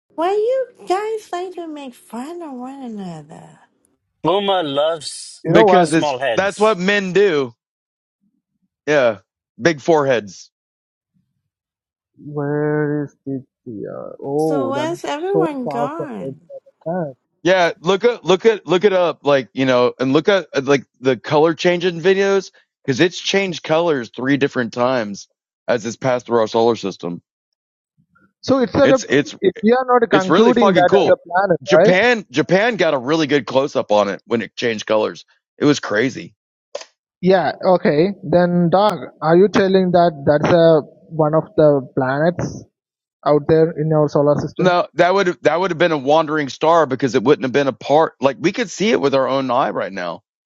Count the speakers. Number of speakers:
4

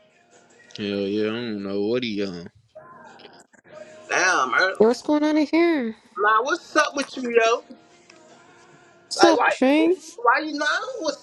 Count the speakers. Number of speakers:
3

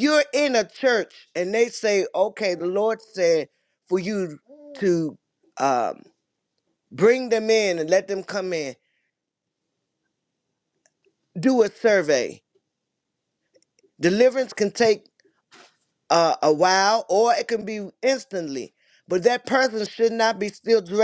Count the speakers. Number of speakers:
1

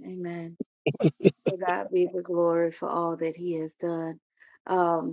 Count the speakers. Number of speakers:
1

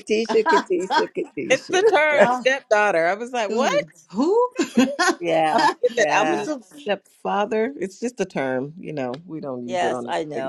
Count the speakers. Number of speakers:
3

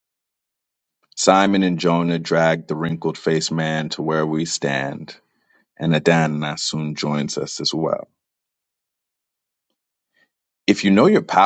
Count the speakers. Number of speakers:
1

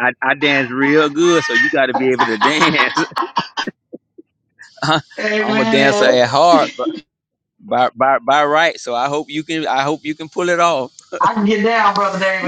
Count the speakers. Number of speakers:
2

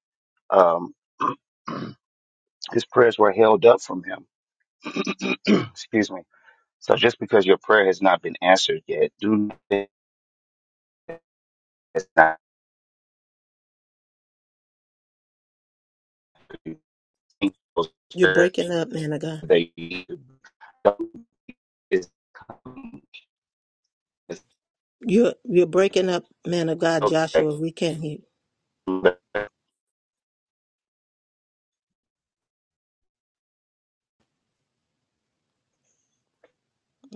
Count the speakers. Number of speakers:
2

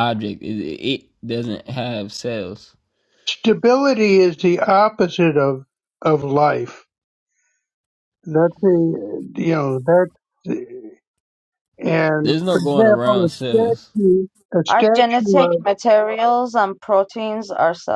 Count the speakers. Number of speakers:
3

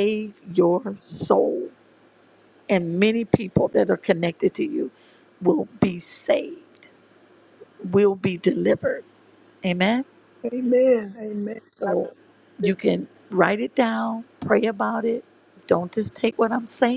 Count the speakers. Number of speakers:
2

